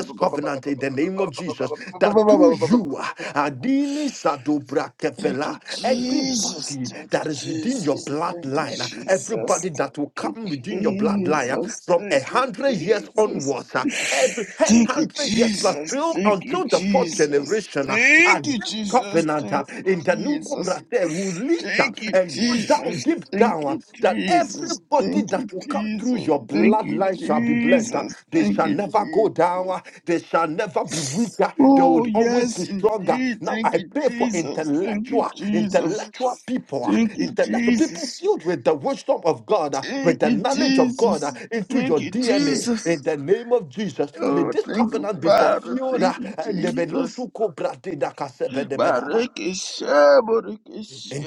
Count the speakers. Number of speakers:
2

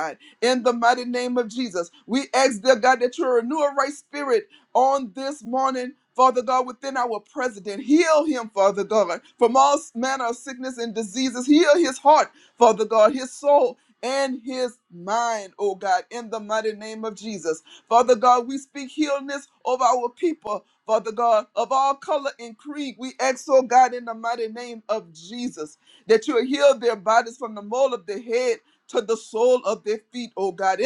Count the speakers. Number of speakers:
1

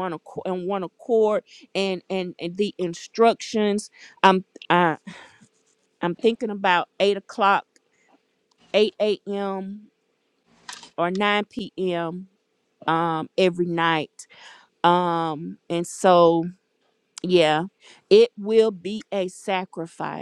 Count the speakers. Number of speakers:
1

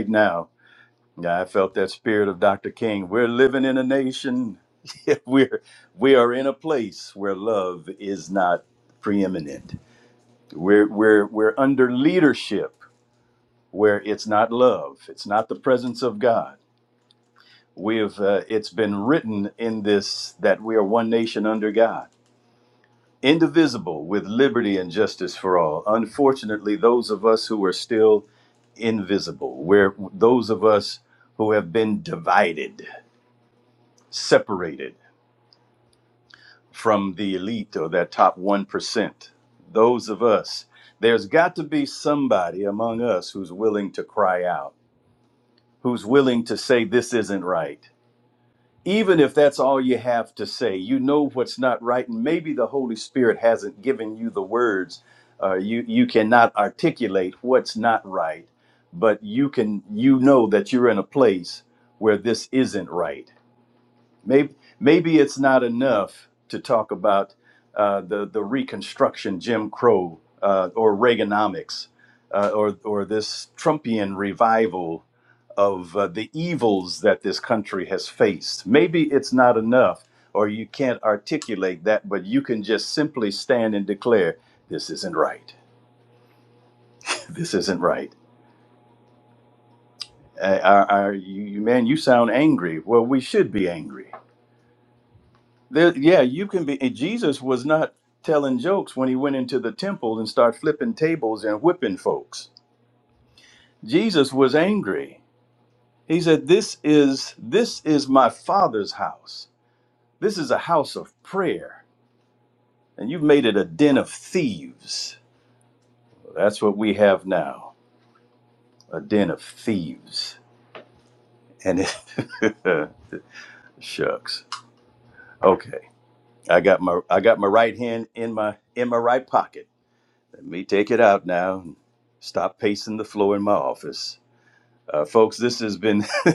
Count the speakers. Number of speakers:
1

